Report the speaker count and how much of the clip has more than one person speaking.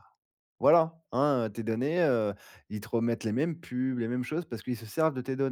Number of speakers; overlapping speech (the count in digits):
1, no overlap